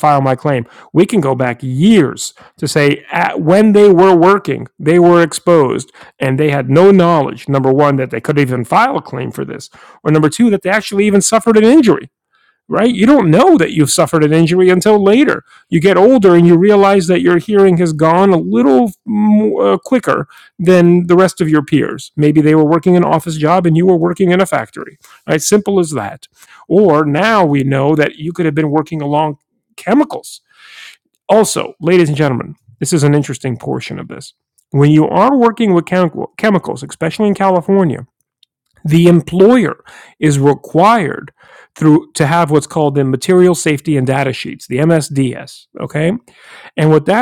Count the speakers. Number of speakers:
one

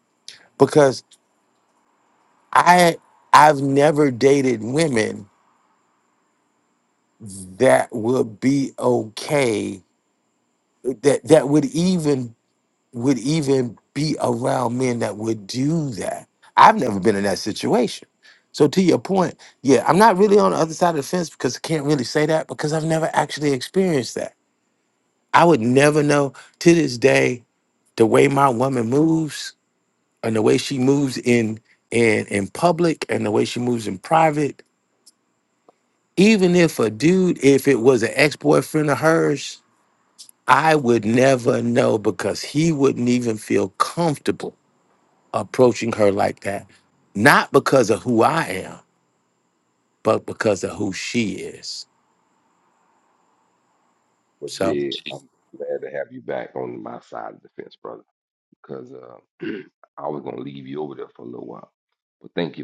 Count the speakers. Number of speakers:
two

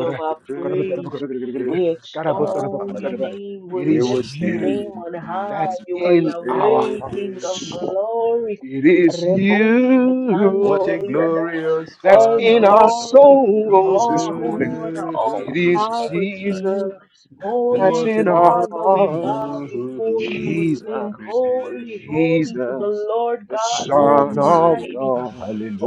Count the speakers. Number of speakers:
three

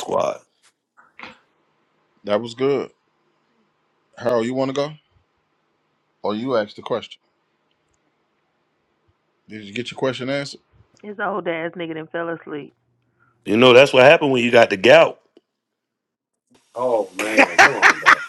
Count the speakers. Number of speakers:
four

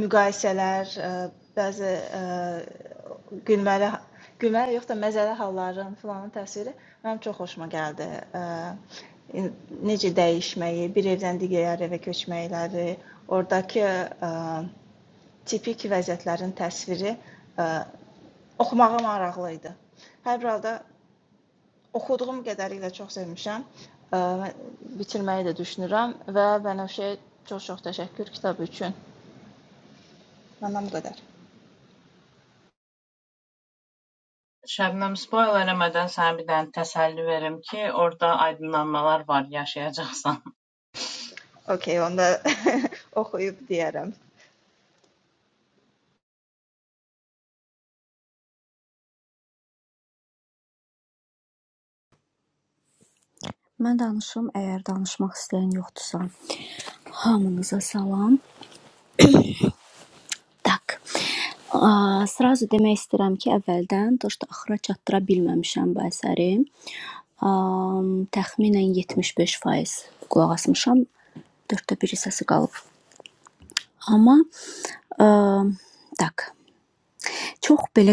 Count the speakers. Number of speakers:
three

